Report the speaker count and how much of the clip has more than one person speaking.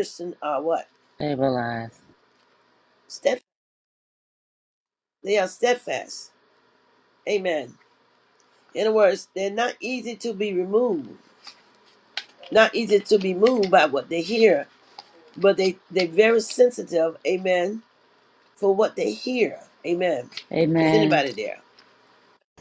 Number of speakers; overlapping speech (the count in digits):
2, about 2%